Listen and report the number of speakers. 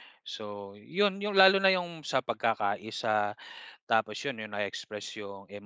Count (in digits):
1